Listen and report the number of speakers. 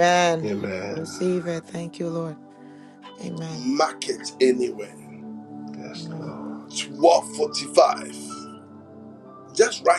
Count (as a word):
three